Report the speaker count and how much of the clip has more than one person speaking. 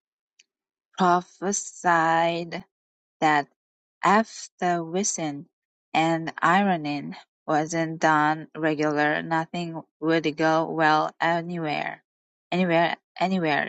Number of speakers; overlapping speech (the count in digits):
1, no overlap